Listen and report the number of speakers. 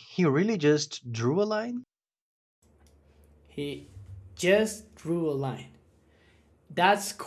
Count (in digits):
2